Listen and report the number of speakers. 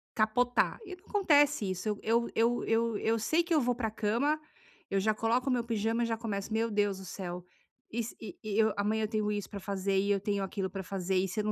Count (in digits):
1